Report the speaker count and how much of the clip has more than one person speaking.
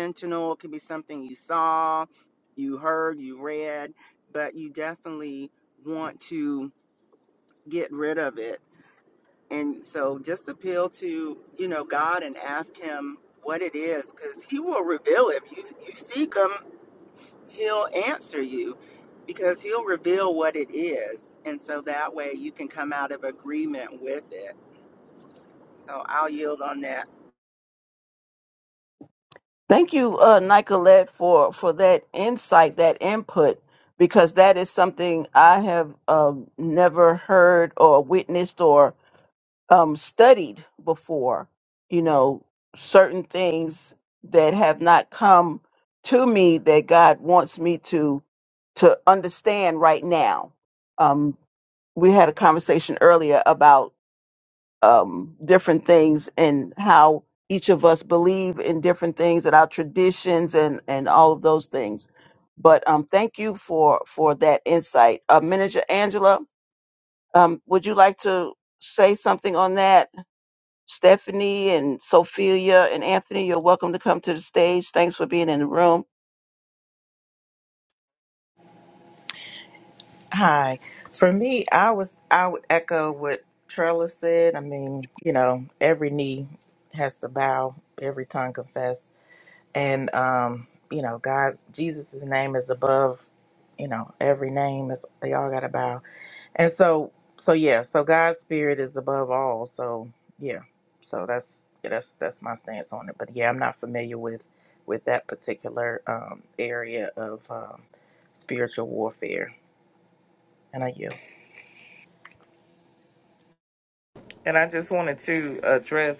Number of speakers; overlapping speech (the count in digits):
4, no overlap